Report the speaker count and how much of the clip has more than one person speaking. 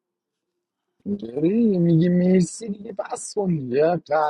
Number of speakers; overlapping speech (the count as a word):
one, no overlap